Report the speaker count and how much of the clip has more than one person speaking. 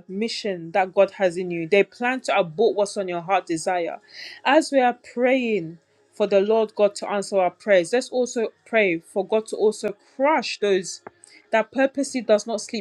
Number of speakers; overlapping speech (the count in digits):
1, no overlap